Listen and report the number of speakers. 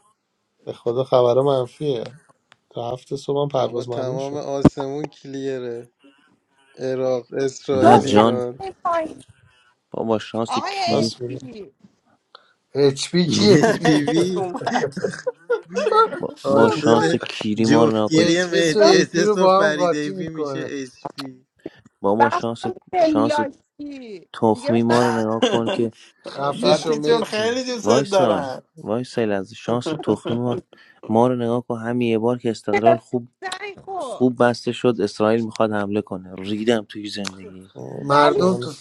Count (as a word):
six